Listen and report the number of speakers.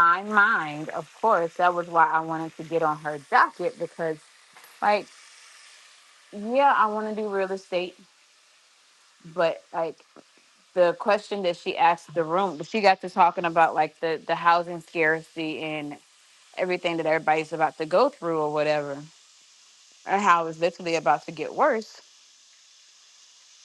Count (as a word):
one